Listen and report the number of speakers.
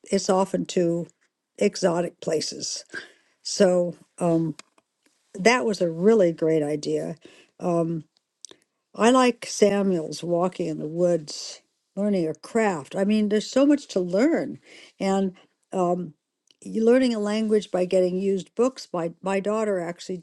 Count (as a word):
one